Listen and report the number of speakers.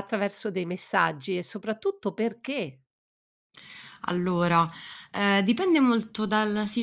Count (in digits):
2